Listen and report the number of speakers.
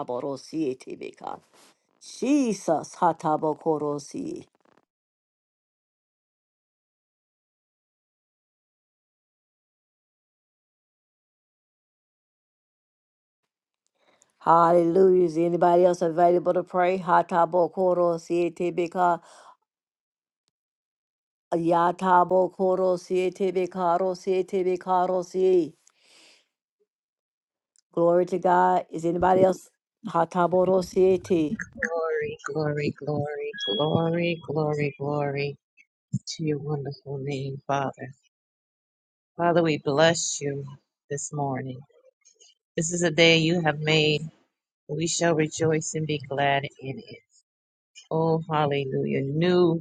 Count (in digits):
2